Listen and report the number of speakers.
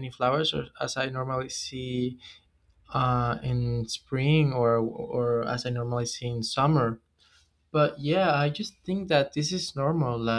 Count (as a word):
one